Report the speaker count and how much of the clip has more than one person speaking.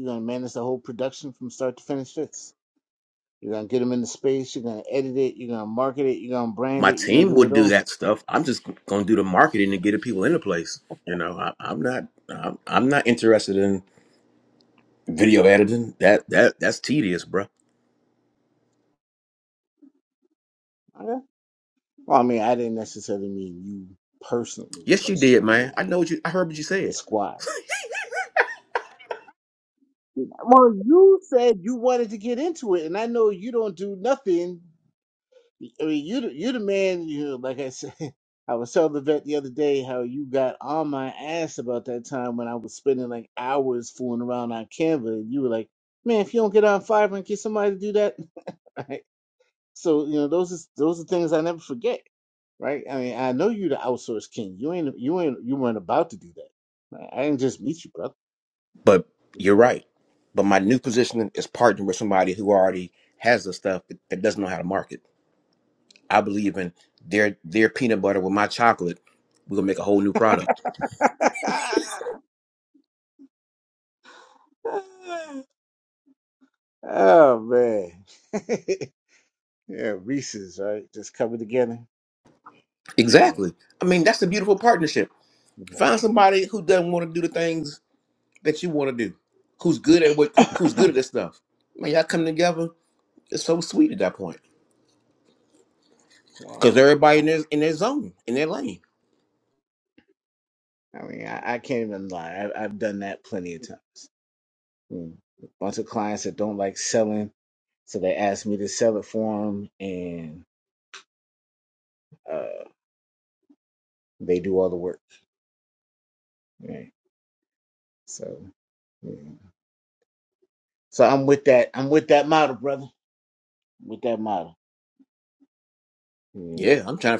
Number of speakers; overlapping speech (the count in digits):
2, about 2%